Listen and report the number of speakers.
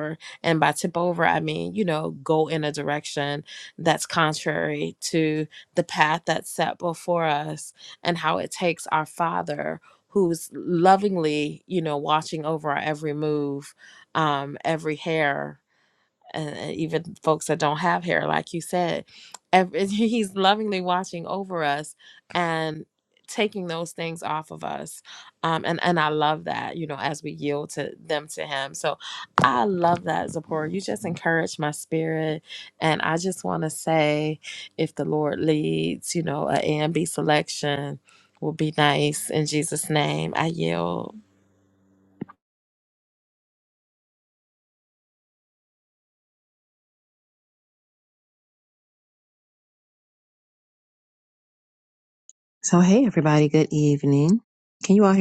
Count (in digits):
2